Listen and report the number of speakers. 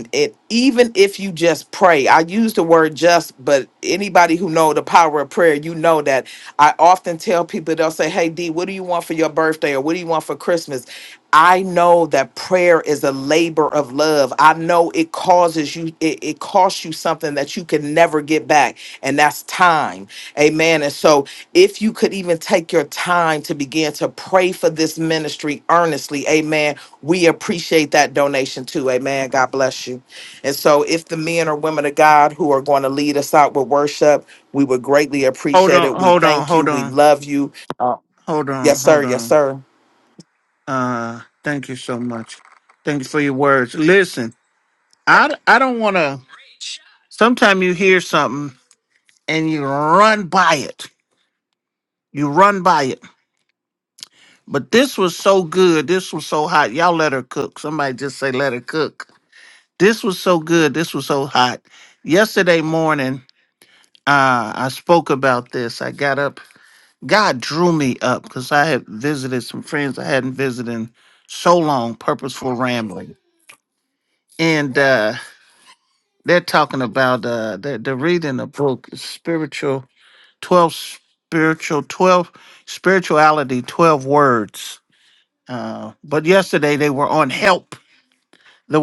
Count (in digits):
2